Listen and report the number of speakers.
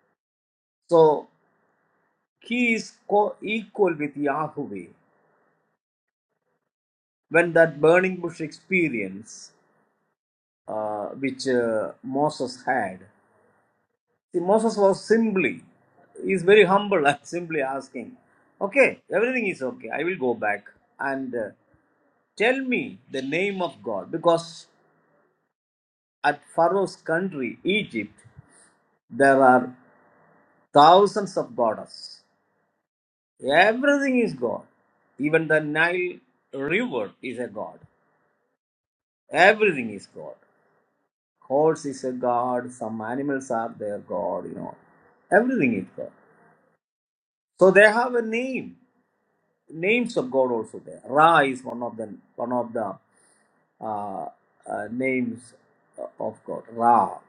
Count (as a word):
one